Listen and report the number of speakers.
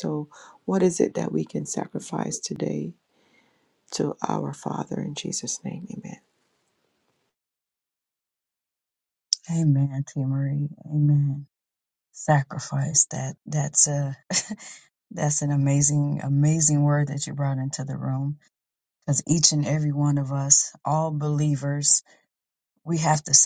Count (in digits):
2